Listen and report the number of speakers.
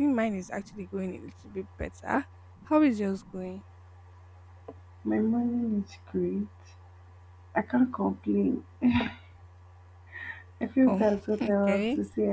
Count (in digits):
2